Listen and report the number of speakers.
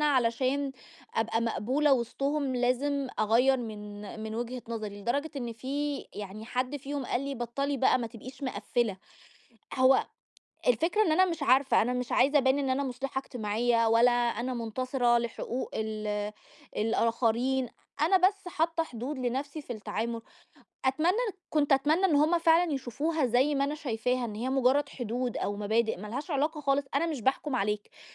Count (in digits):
1